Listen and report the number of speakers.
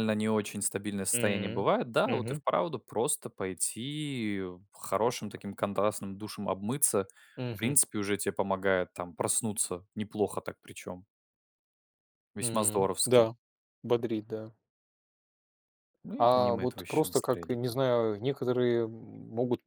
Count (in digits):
2